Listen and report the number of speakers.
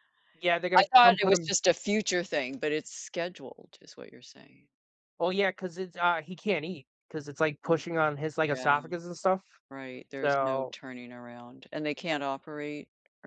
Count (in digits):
2